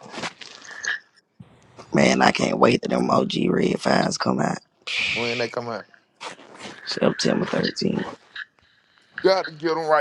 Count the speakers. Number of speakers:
2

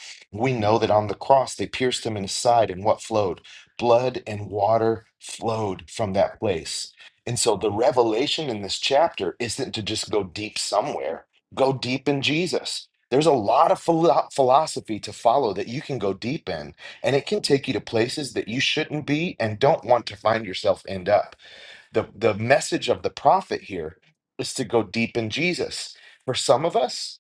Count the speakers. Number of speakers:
1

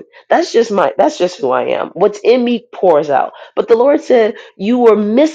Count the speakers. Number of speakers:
1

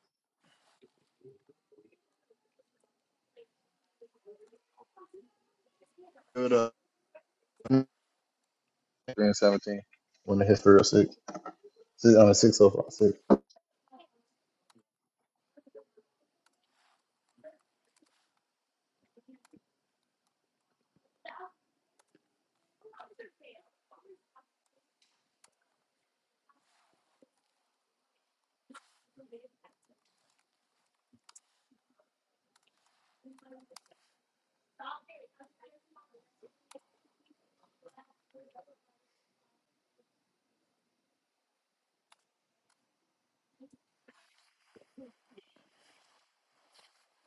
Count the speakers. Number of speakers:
1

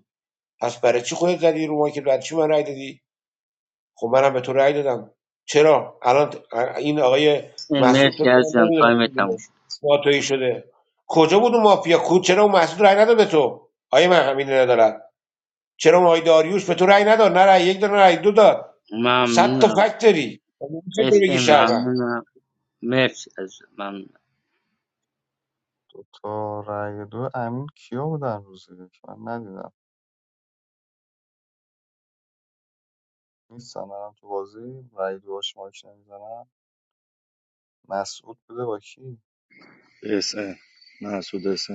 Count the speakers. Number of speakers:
4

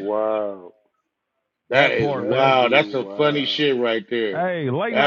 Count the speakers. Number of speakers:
3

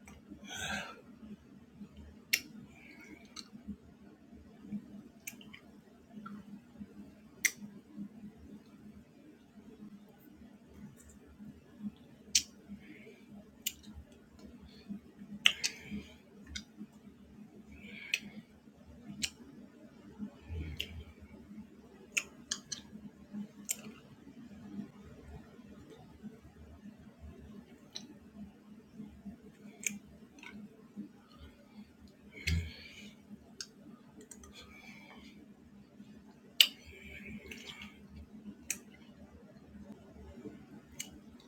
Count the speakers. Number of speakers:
0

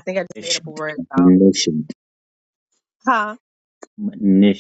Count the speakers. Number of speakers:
2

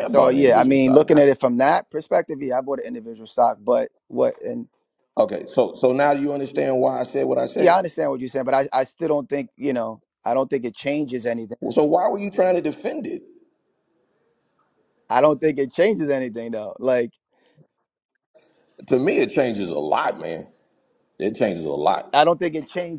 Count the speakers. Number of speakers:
2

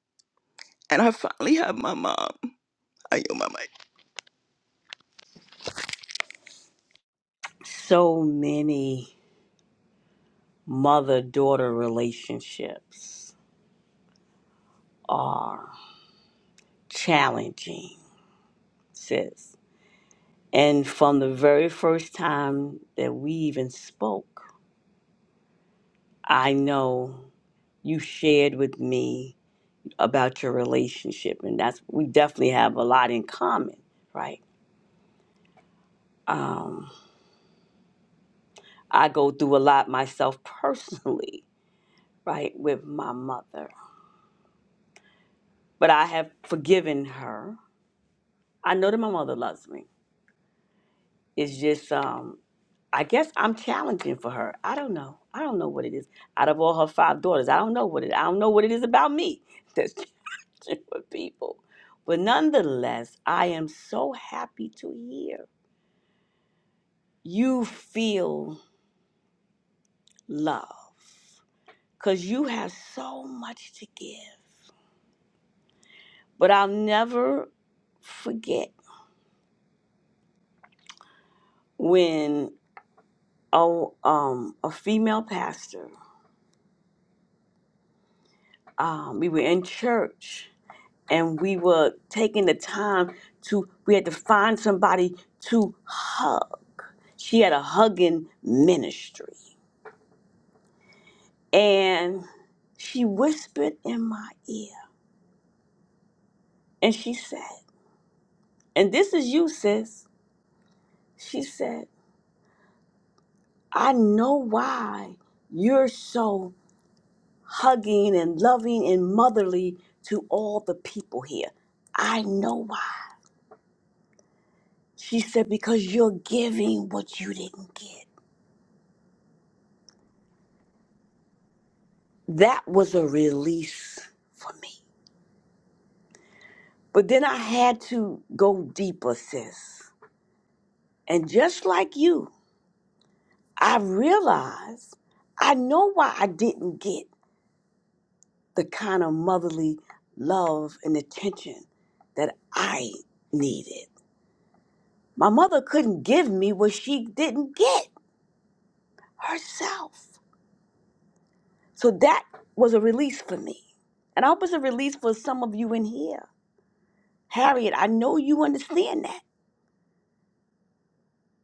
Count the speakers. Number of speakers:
2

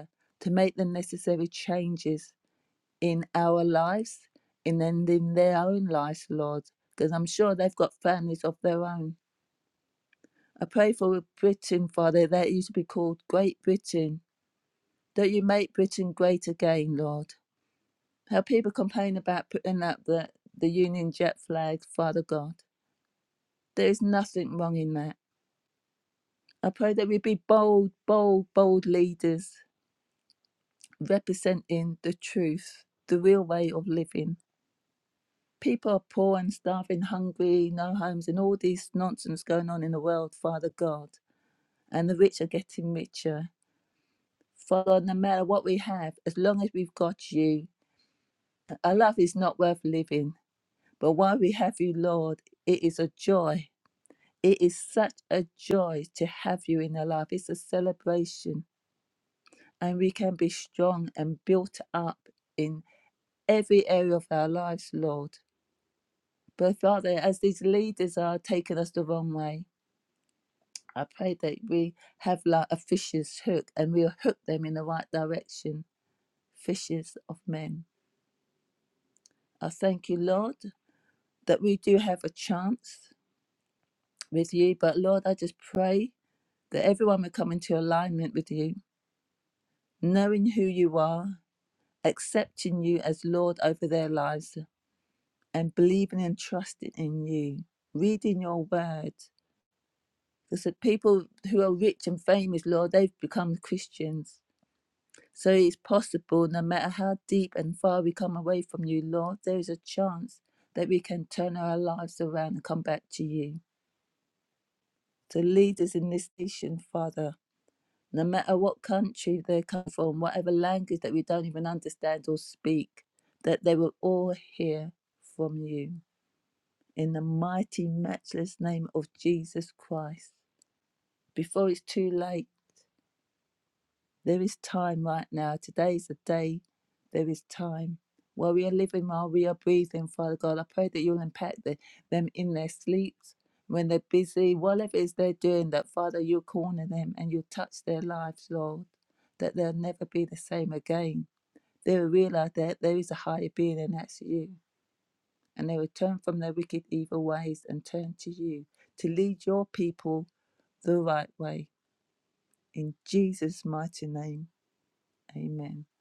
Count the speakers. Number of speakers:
1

